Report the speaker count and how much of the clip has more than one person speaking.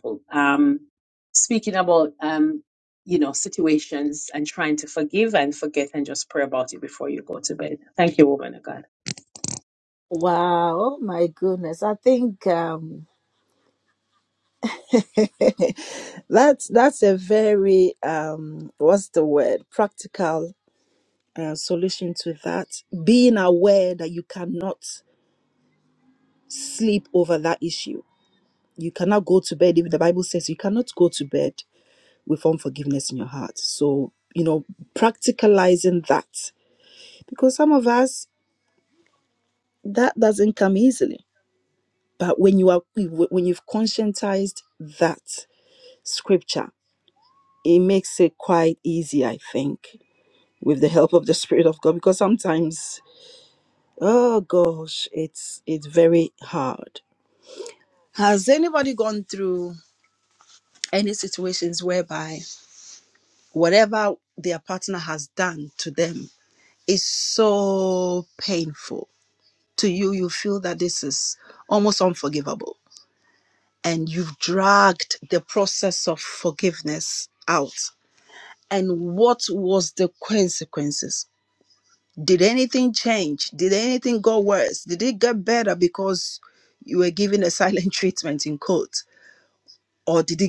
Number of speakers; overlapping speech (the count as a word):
two, no overlap